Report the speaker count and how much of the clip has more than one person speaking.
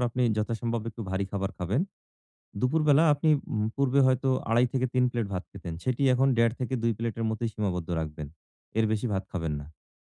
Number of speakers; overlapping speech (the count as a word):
one, no overlap